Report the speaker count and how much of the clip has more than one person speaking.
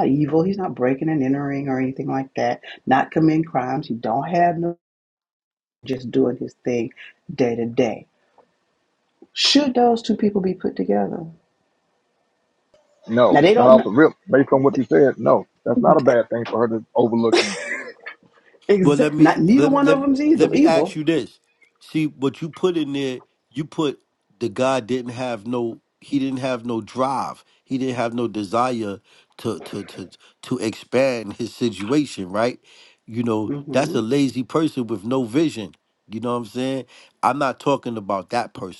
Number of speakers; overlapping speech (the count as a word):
three, about 7%